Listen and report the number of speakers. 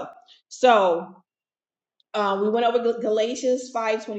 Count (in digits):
1